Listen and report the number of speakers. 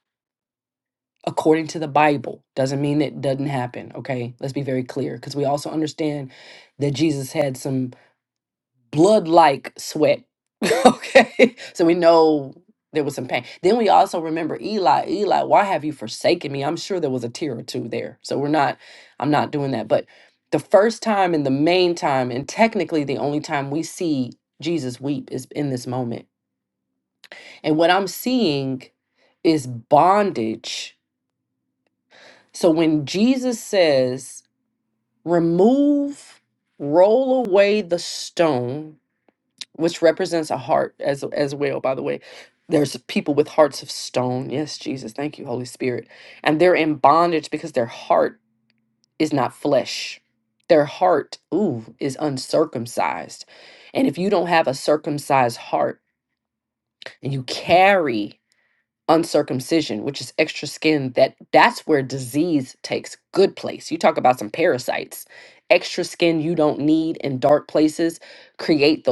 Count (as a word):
one